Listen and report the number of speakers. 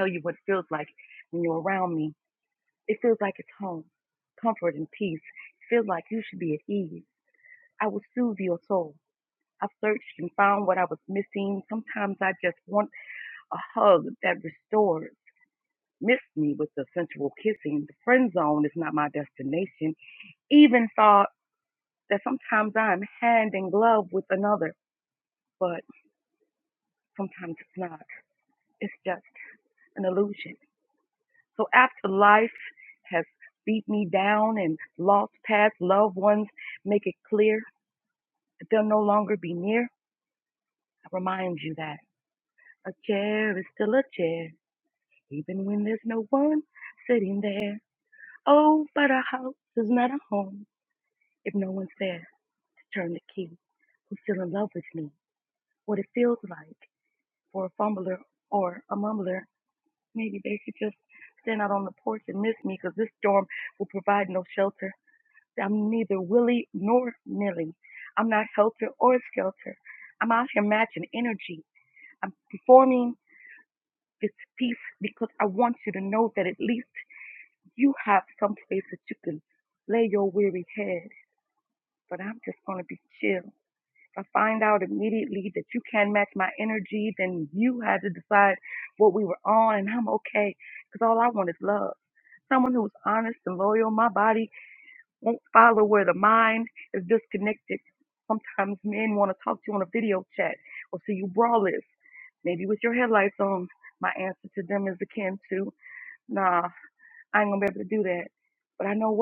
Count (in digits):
1